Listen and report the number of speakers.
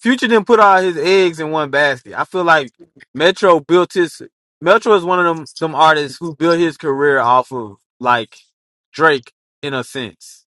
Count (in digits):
1